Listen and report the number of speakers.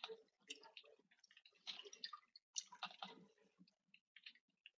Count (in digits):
0